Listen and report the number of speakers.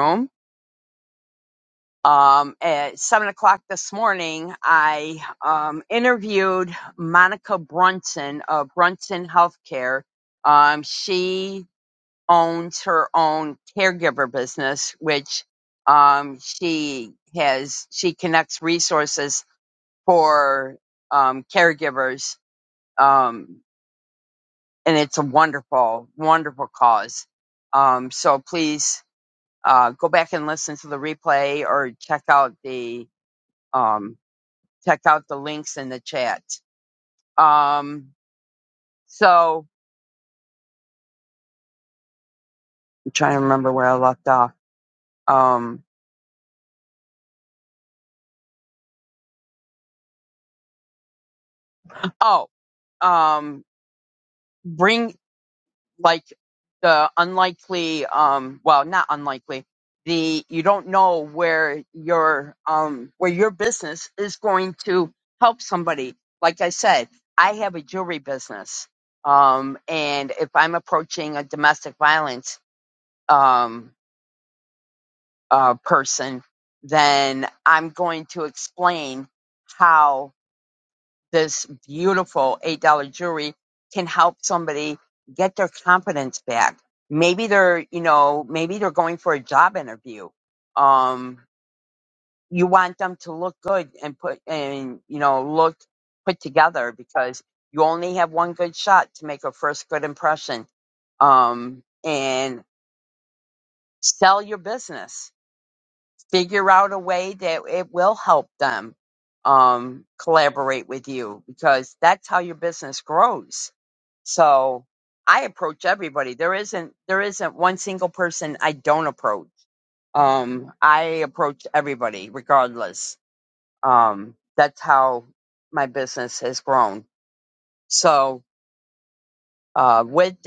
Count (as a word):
one